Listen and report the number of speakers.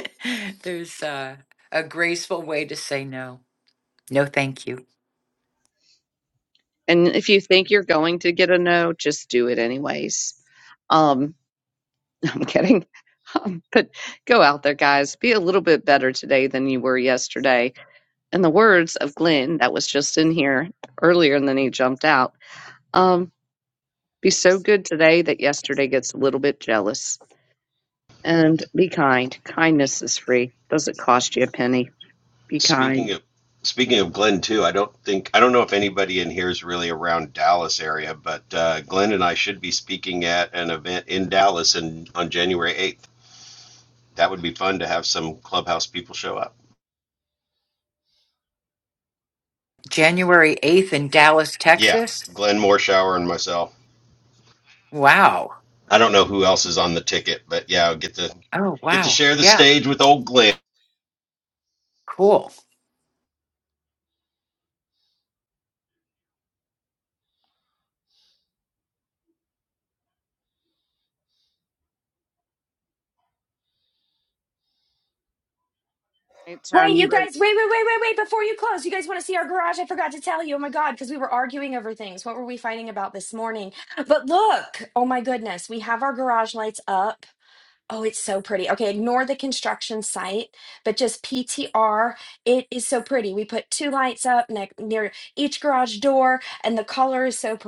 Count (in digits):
4